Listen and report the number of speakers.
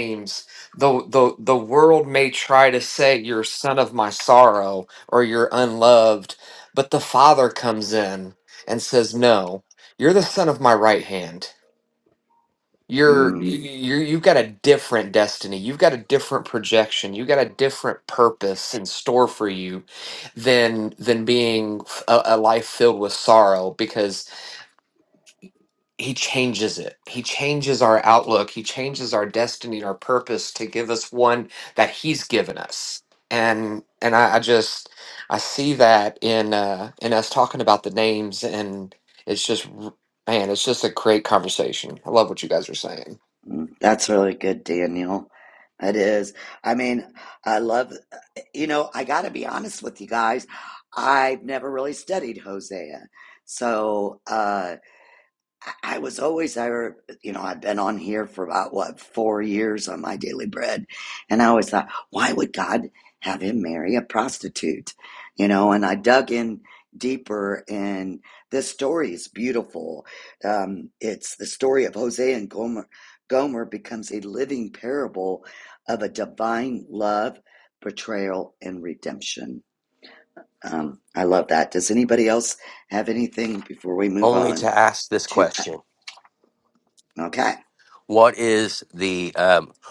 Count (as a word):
three